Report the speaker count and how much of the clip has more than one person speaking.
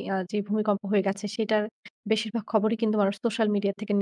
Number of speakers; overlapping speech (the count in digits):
1, no overlap